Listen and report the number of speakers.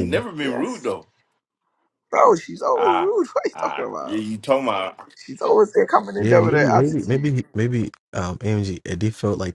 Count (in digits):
3